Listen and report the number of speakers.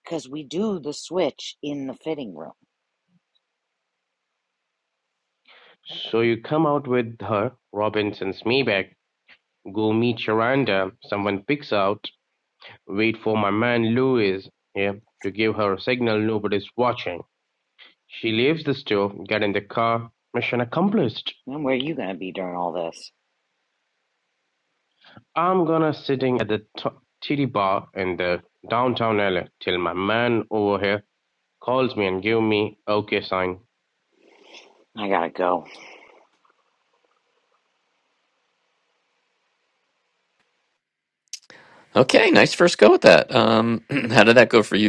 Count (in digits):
3